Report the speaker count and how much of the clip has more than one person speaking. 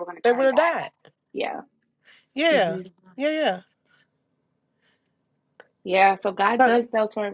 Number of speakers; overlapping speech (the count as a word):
two, about 13%